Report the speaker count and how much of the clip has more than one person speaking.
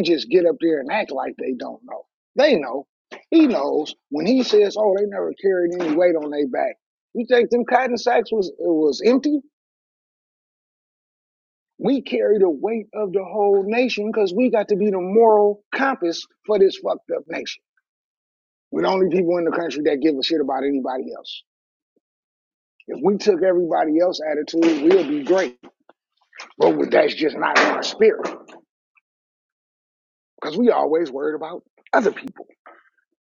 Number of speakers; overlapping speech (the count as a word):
one, no overlap